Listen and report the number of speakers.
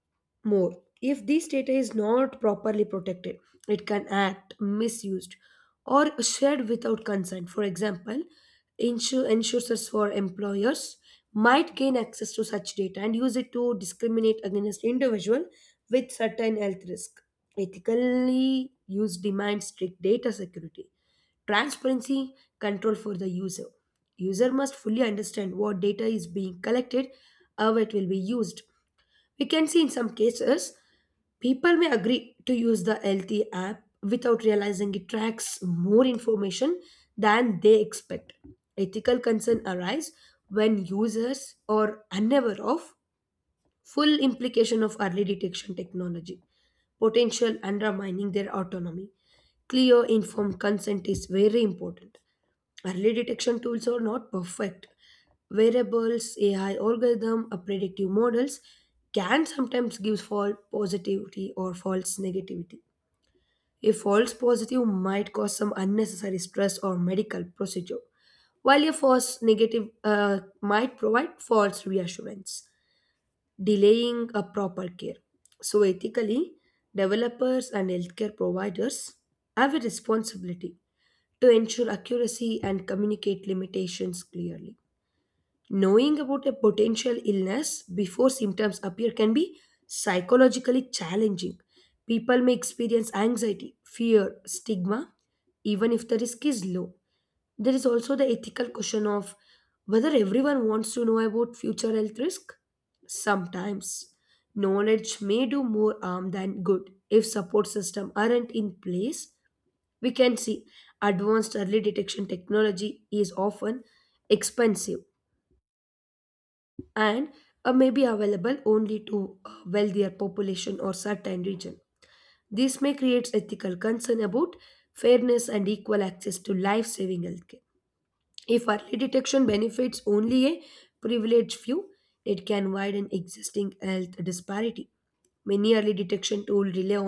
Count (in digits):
1